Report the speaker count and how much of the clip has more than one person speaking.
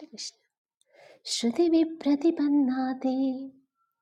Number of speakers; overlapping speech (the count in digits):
1, no overlap